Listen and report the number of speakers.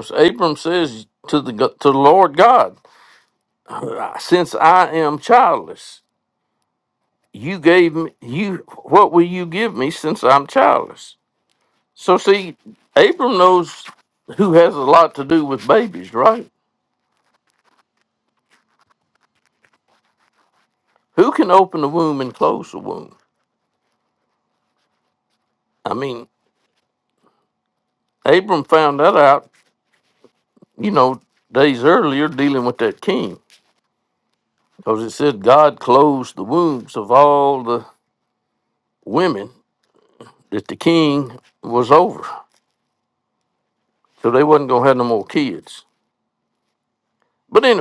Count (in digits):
1